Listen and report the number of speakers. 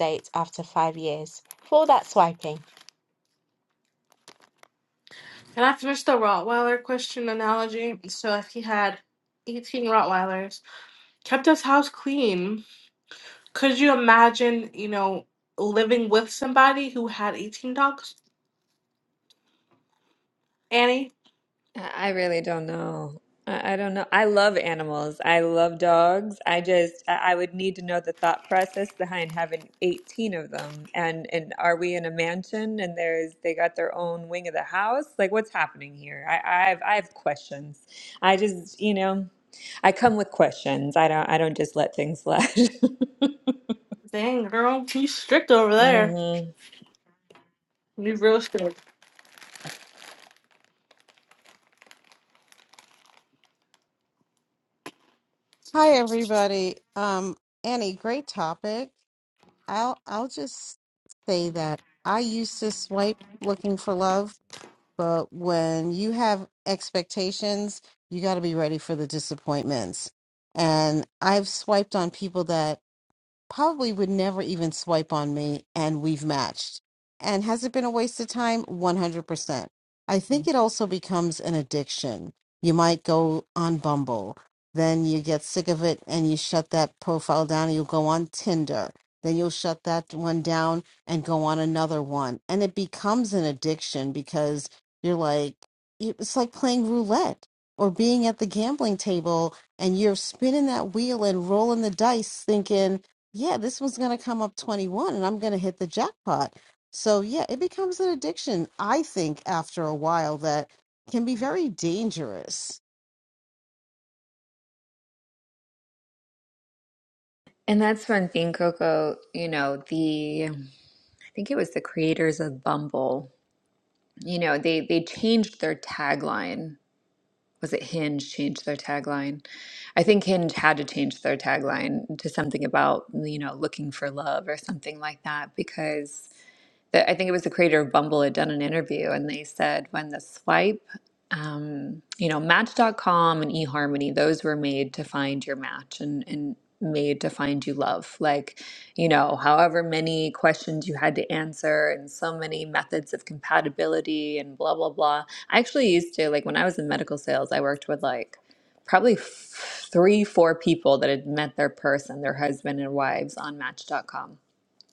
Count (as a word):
four